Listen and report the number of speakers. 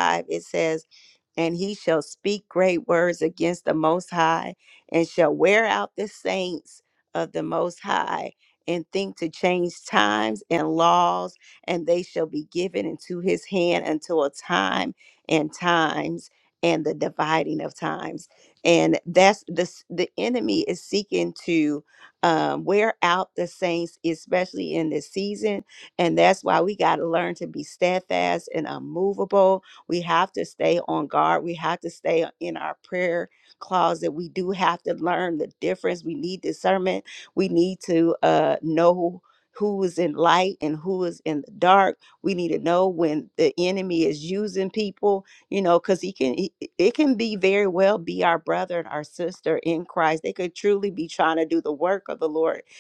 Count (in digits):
1